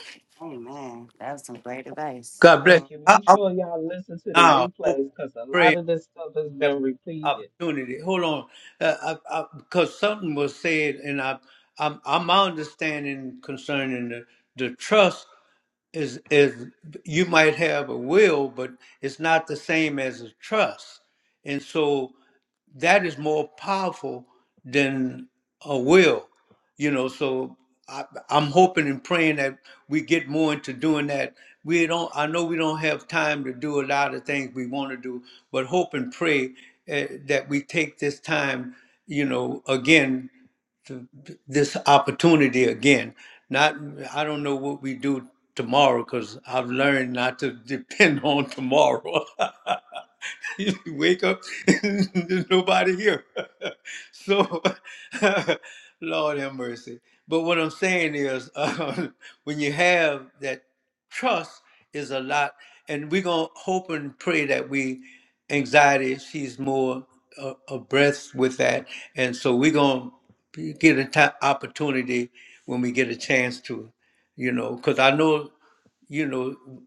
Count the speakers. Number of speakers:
three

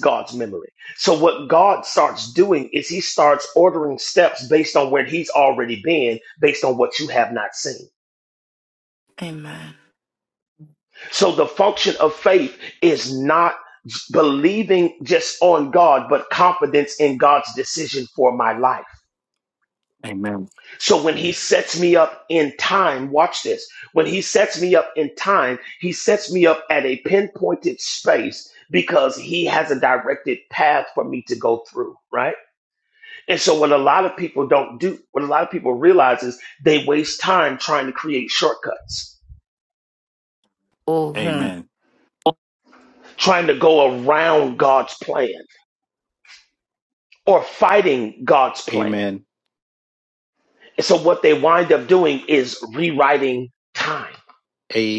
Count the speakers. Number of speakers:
three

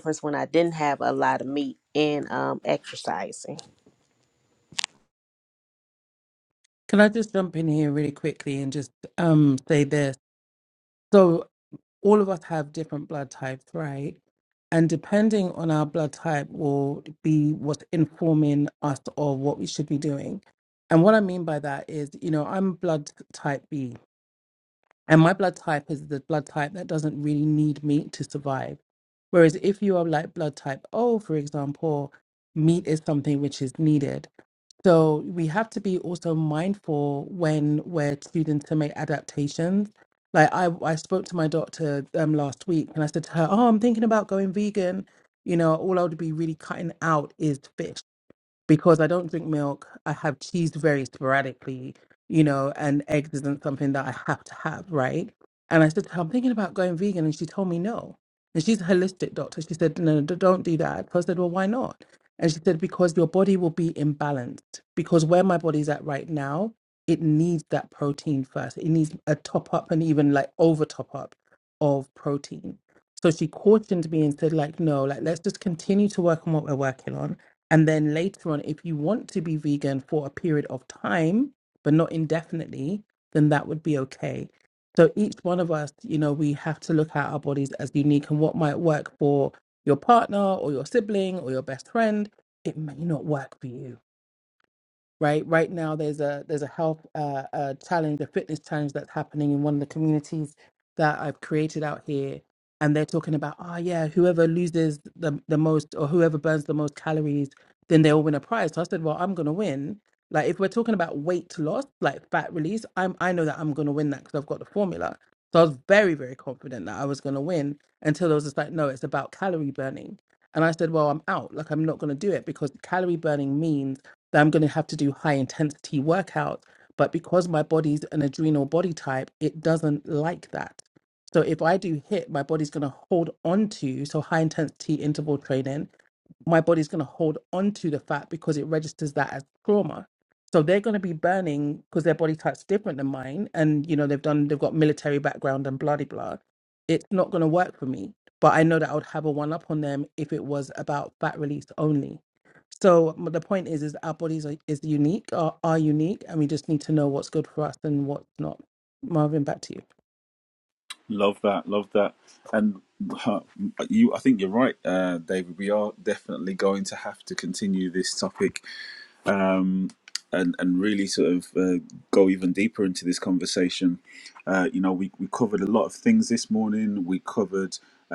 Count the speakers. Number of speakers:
three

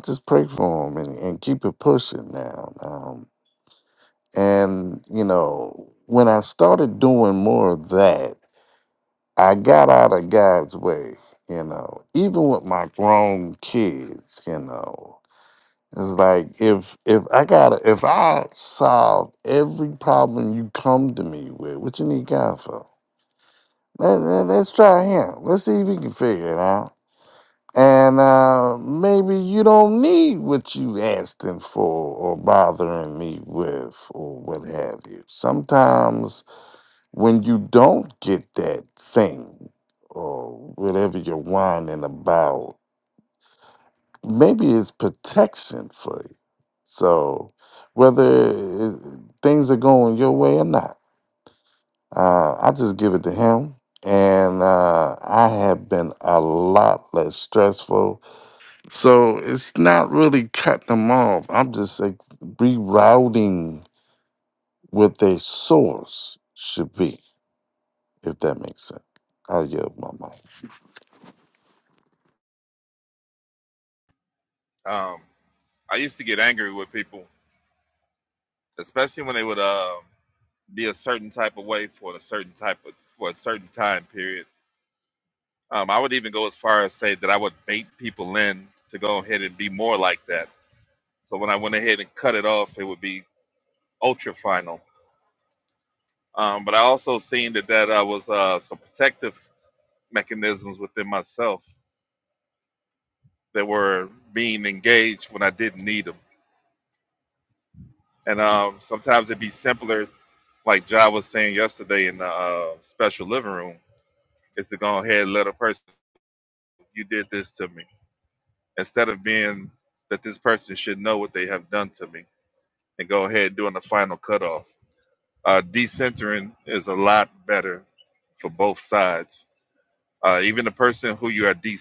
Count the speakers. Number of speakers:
two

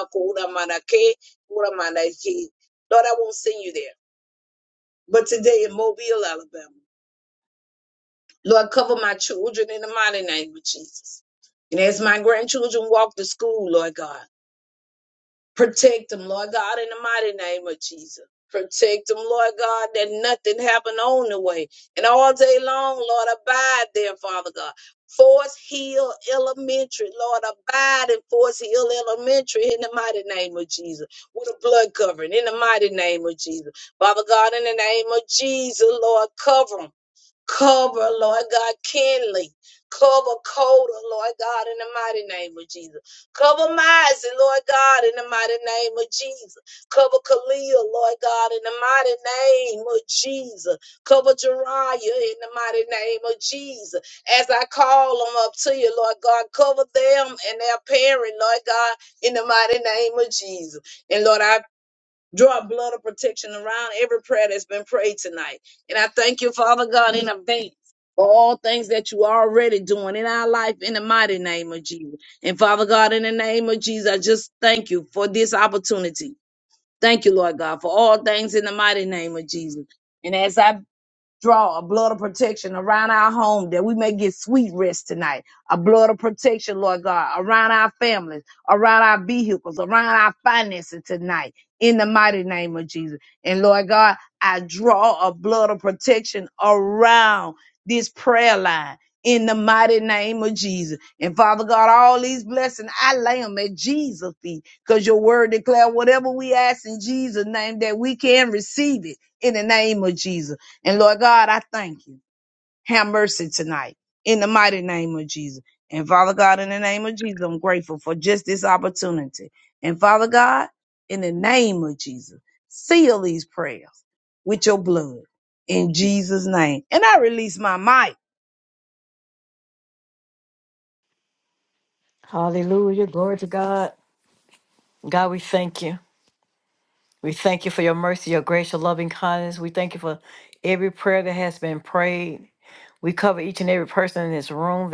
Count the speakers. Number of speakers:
two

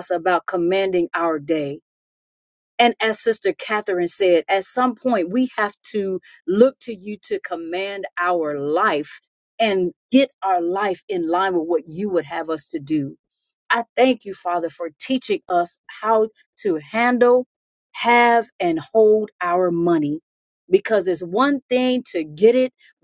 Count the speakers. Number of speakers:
one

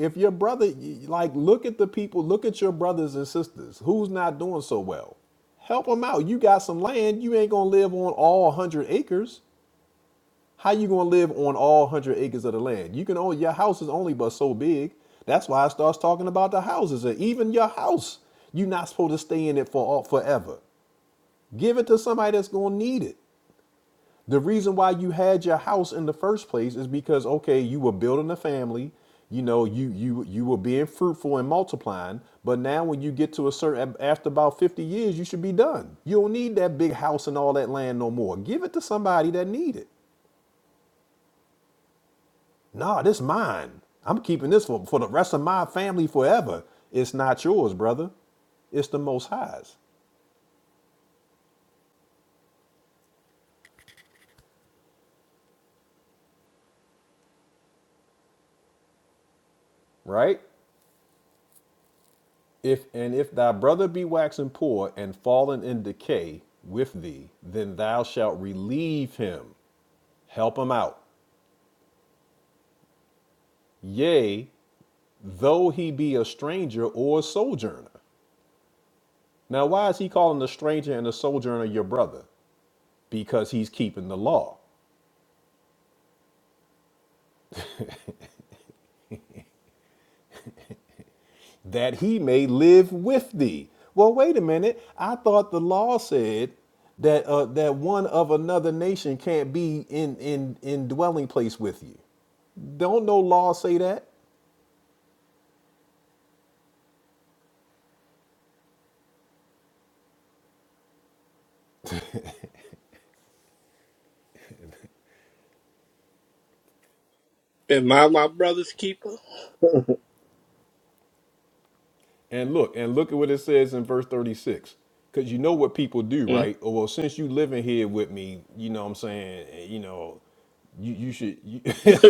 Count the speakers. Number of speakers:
two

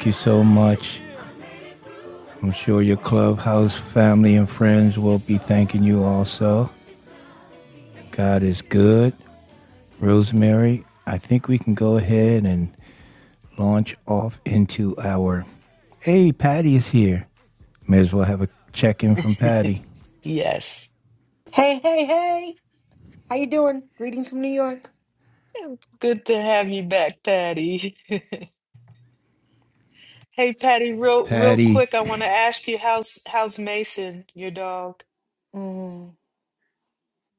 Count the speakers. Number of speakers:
three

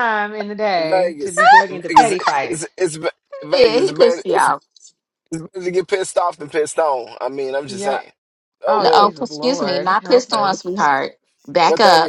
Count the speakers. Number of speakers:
three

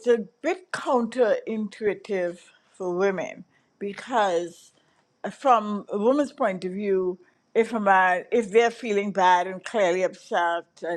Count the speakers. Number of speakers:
one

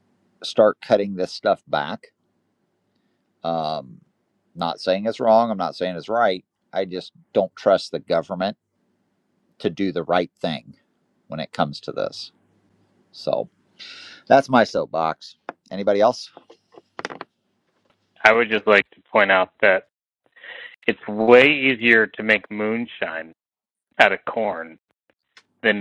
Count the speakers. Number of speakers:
two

